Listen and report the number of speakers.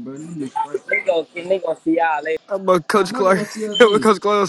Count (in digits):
3